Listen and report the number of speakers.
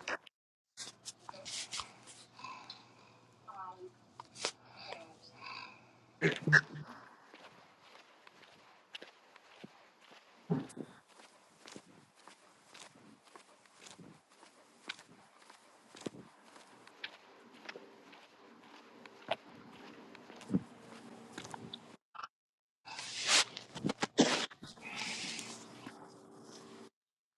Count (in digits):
0